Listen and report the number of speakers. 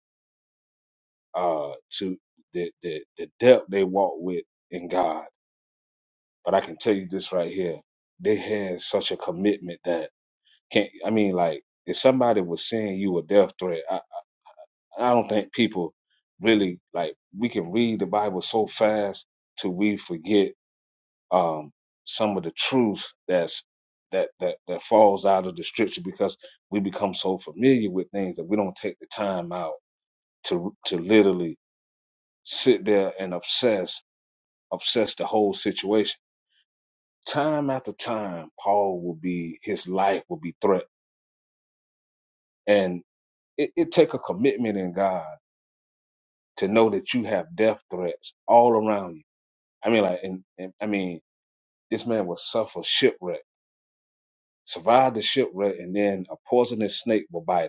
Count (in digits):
1